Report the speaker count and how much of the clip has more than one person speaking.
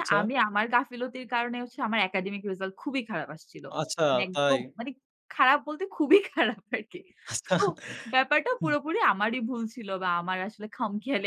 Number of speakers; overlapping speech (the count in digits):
2, about 8%